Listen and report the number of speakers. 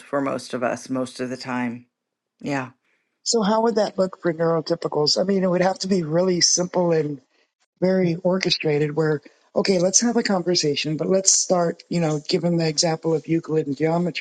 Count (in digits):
2